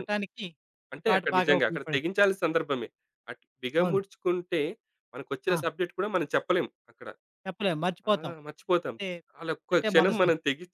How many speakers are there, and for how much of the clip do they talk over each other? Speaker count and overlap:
2, about 20%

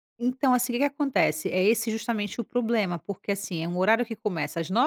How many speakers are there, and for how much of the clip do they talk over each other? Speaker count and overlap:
1, no overlap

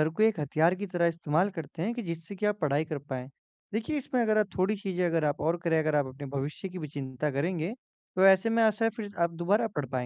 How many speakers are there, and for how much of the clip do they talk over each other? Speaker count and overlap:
1, no overlap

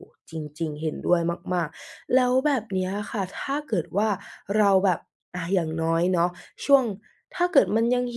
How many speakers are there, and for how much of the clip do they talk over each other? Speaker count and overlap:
1, no overlap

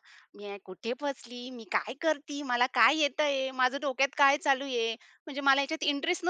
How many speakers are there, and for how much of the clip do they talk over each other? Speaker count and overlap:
1, no overlap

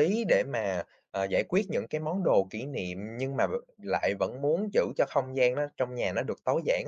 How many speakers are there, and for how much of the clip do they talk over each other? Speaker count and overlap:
1, no overlap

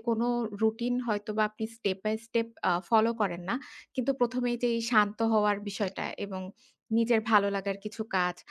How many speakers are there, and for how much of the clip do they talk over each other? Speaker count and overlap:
1, no overlap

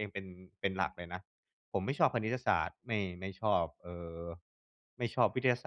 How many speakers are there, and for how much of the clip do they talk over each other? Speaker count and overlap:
1, no overlap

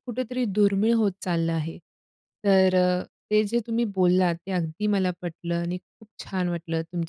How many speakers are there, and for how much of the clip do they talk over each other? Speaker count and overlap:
1, no overlap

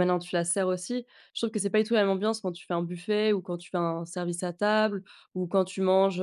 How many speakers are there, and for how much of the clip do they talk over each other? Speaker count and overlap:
1, no overlap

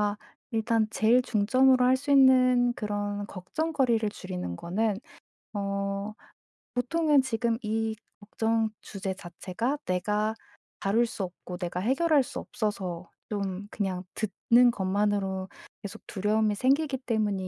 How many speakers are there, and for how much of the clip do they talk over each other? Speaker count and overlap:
1, no overlap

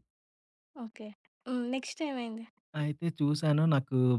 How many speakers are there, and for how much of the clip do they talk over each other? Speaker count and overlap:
2, no overlap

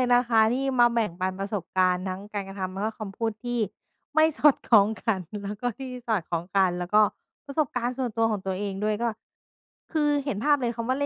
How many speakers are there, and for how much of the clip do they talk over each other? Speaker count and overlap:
1, no overlap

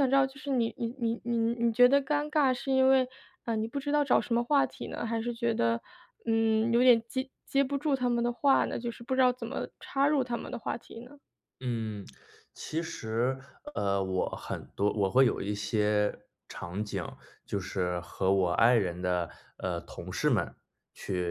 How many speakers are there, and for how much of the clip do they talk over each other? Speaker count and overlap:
2, no overlap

